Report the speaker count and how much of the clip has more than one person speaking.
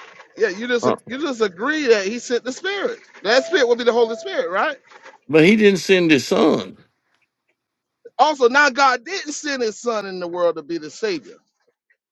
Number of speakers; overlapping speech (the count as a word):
two, about 1%